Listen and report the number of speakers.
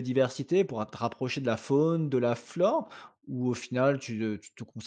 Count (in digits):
1